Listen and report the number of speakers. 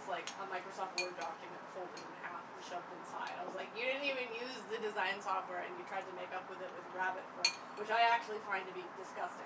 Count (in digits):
1